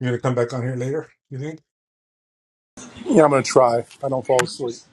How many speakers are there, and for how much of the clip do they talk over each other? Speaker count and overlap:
2, no overlap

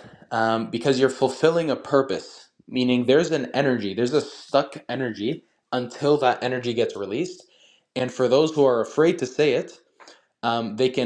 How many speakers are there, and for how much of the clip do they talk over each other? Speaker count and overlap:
1, no overlap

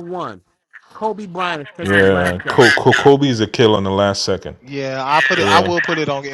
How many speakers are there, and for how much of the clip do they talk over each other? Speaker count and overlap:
3, about 18%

